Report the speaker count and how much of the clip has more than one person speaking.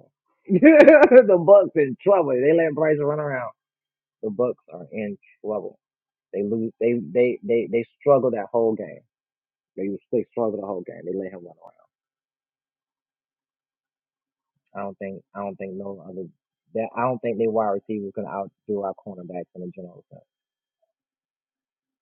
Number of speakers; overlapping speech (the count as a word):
one, no overlap